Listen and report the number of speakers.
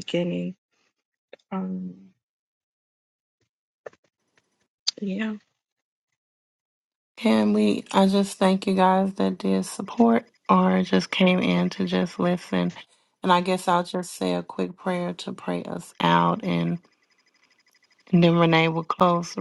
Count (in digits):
2